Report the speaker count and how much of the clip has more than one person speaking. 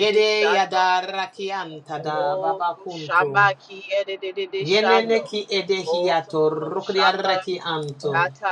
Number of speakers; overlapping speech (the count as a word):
two, about 52%